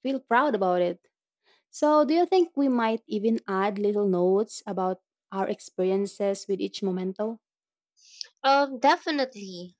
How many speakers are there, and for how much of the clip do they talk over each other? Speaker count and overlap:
two, no overlap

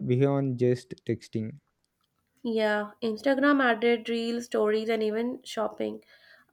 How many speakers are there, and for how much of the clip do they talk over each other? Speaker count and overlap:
two, no overlap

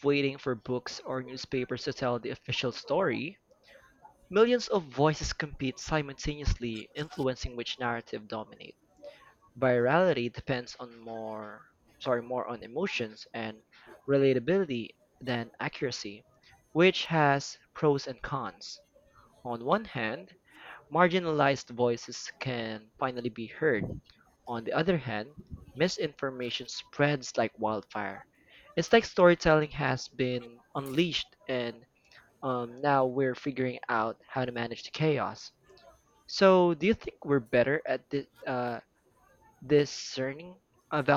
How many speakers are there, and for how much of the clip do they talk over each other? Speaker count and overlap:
one, no overlap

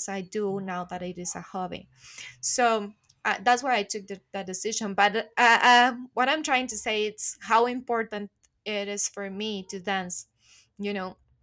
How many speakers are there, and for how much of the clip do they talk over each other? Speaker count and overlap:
one, no overlap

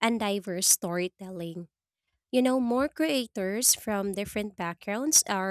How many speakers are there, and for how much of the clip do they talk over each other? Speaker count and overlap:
one, no overlap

